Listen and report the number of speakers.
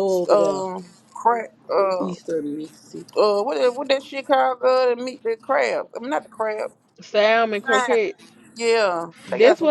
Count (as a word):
three